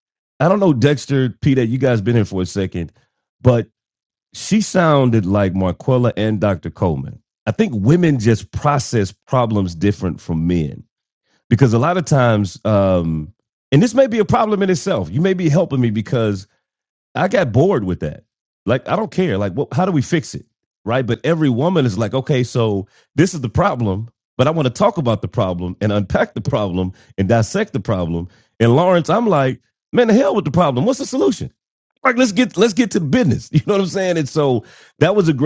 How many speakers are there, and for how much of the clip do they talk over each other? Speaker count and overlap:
1, no overlap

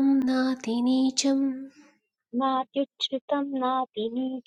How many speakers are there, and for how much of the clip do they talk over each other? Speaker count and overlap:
2, no overlap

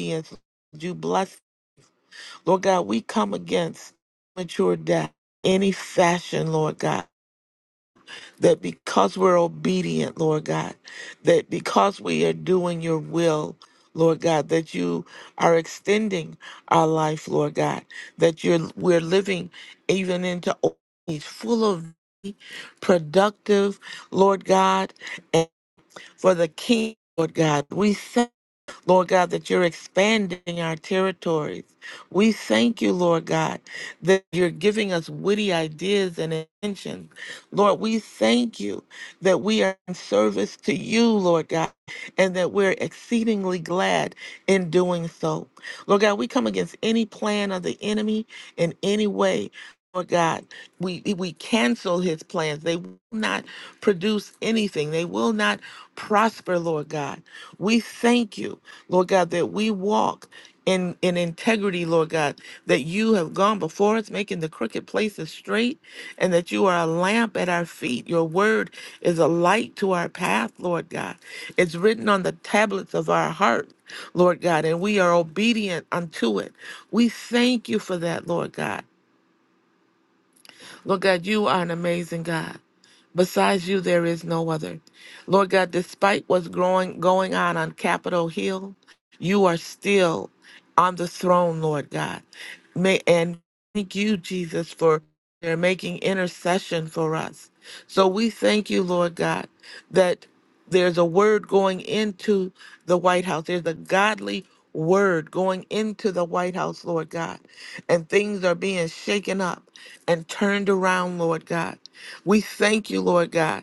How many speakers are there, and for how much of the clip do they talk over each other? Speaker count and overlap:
1, no overlap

